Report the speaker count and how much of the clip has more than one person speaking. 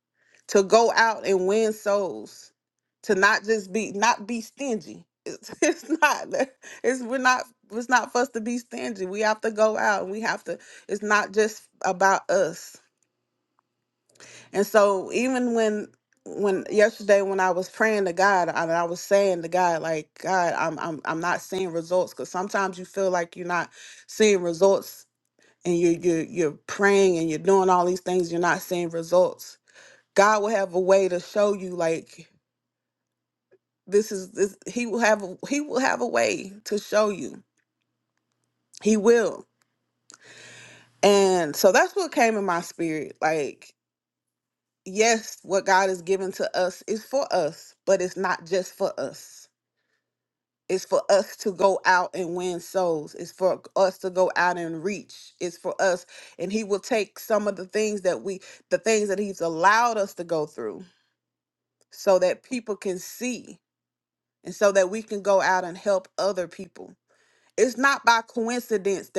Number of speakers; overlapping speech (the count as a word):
one, no overlap